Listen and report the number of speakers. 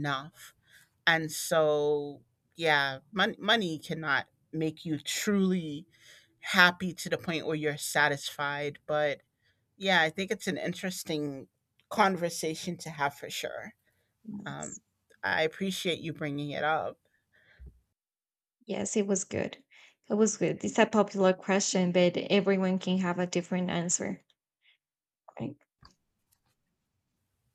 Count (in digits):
2